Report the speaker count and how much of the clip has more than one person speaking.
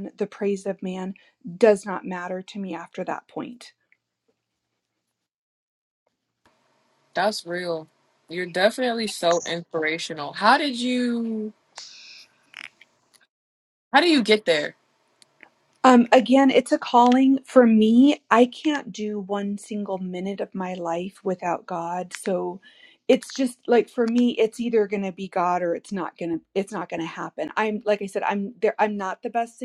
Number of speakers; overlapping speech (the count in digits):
2, no overlap